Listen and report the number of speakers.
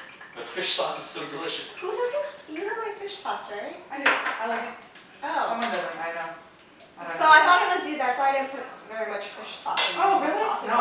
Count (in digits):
3